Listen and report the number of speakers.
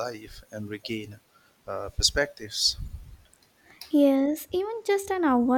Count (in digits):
2